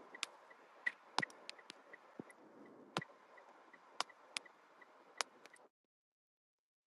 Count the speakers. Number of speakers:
0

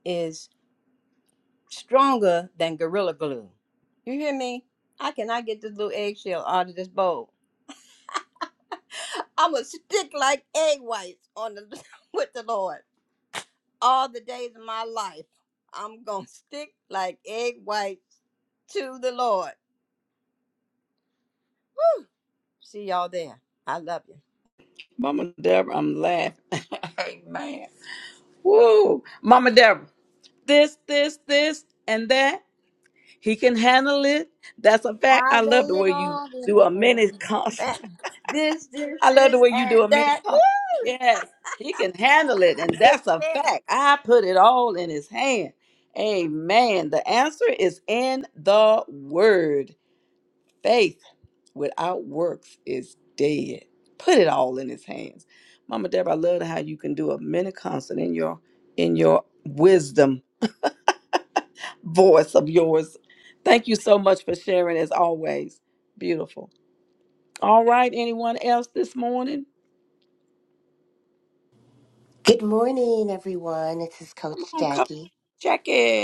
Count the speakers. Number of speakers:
3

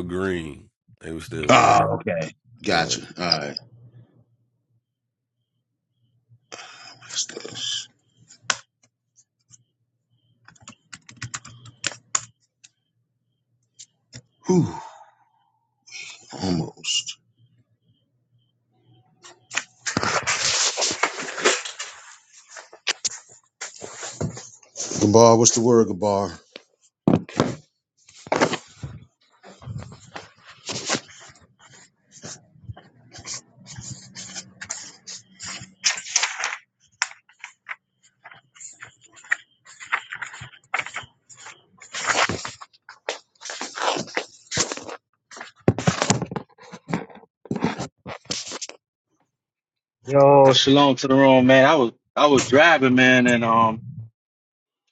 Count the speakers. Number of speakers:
3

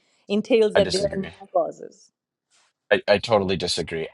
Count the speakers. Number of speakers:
2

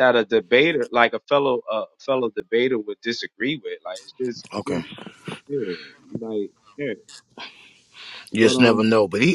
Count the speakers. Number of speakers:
2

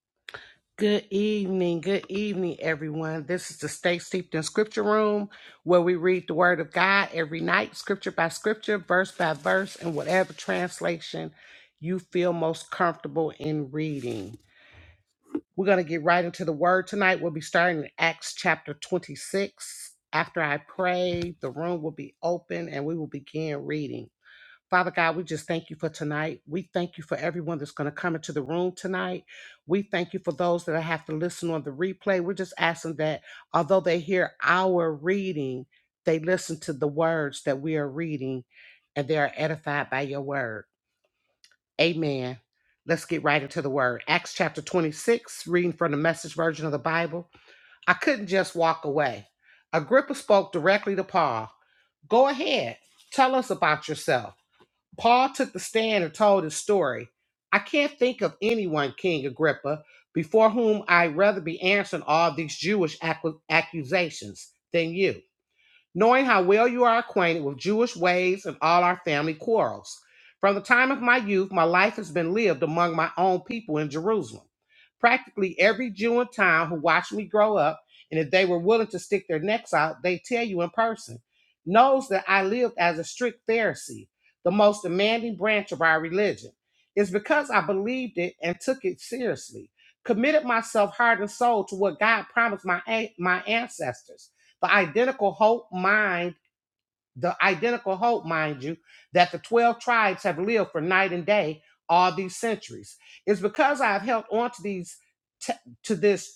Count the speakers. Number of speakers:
1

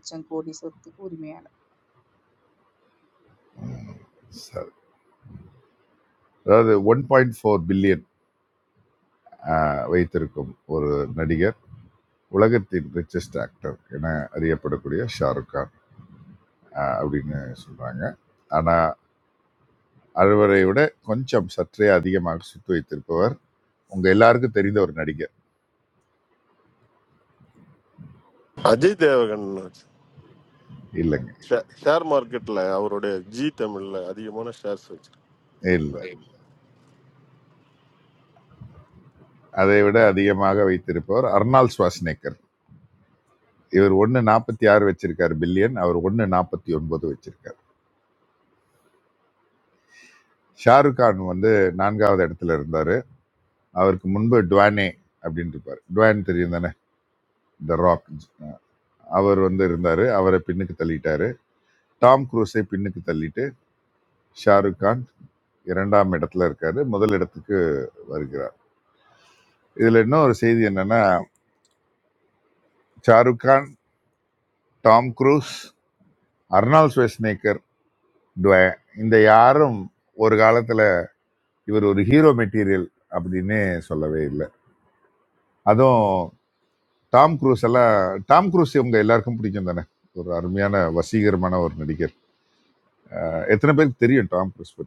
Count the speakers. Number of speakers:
3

